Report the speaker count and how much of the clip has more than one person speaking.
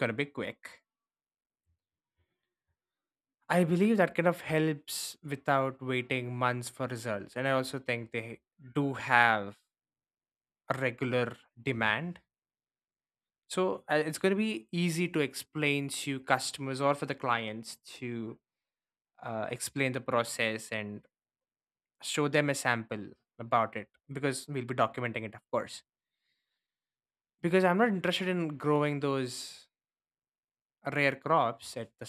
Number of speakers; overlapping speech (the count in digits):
1, no overlap